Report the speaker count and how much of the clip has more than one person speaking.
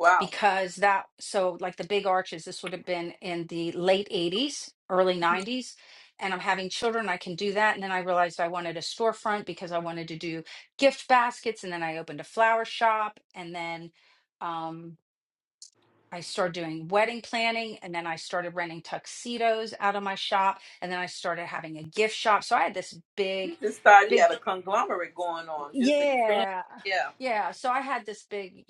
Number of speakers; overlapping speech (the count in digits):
2, about 5%